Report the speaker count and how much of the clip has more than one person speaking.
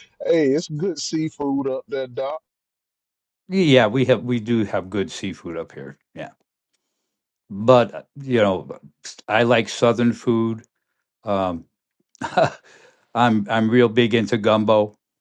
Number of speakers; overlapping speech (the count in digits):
2, no overlap